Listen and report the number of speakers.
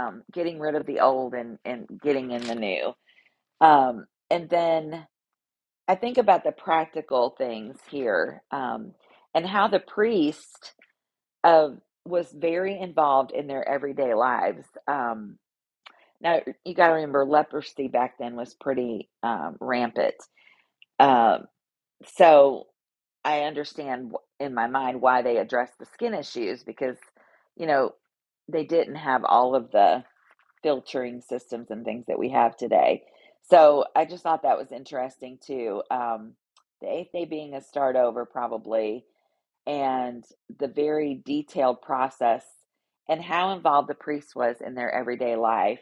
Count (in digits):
1